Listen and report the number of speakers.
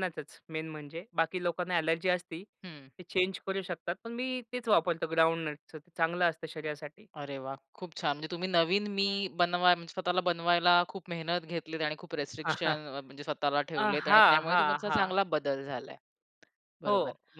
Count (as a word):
two